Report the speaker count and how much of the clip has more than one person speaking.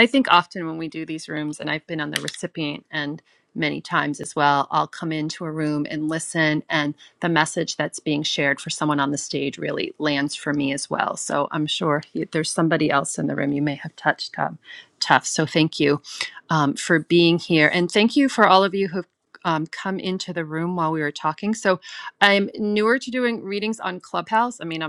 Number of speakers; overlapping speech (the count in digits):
1, no overlap